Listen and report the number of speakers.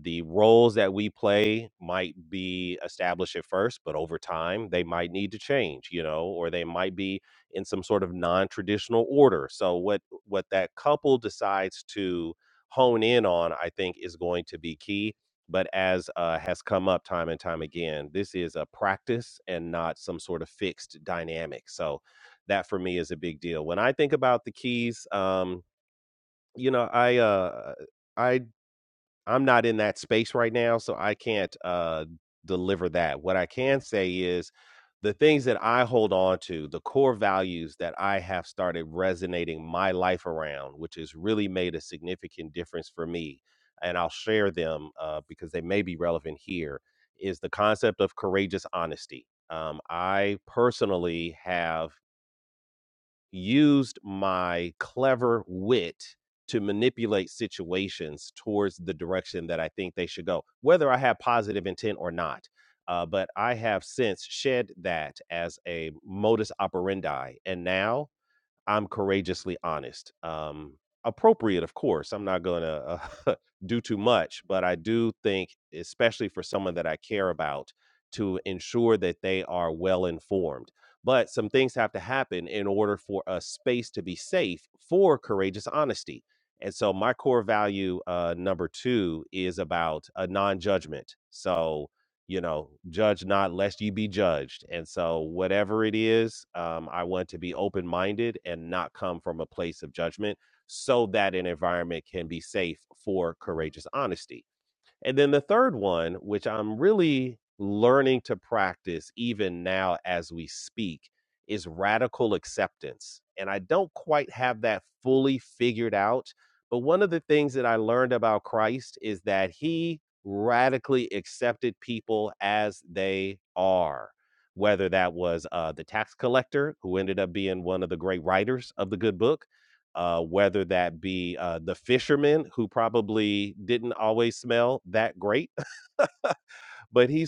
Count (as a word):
one